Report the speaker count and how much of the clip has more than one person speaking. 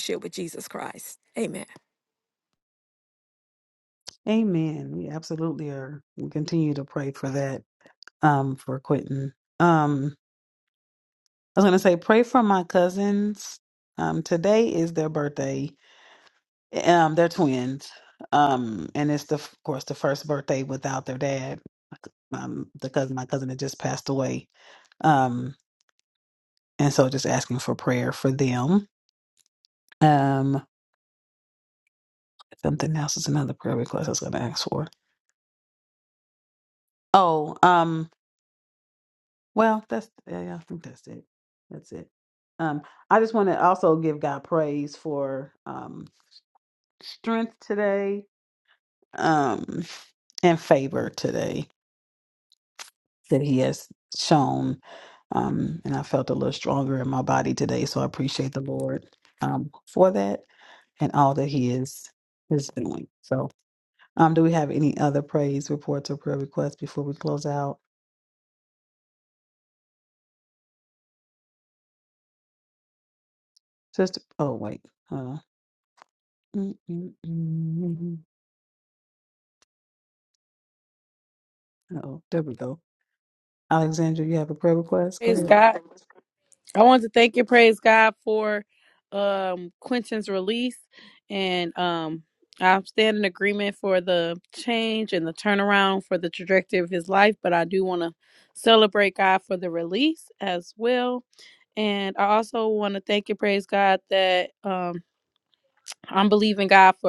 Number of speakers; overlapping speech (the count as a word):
three, under 1%